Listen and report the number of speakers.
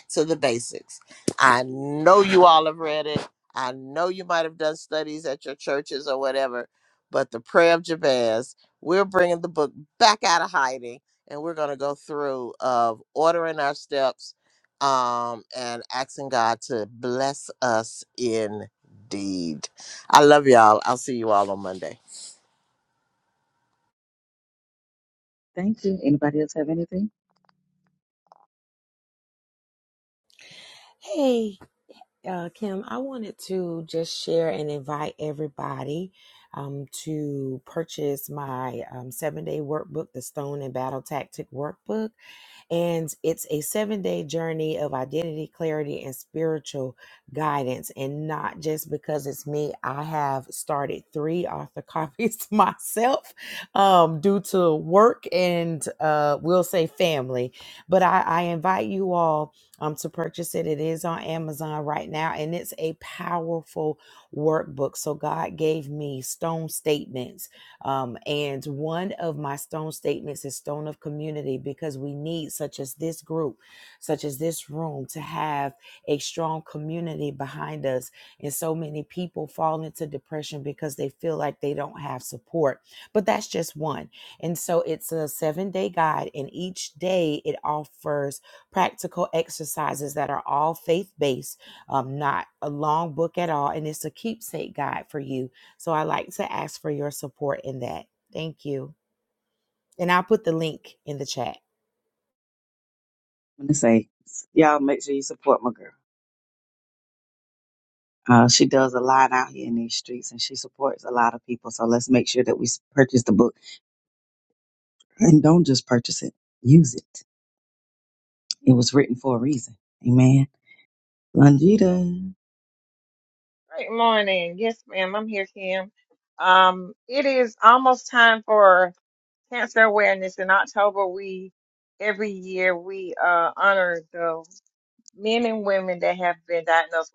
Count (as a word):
four